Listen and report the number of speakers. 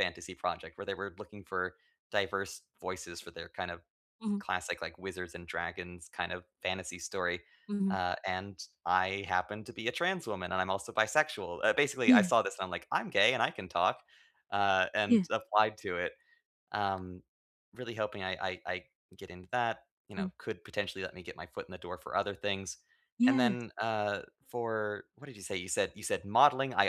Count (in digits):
2